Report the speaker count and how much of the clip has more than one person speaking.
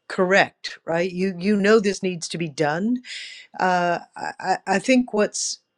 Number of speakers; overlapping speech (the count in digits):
1, no overlap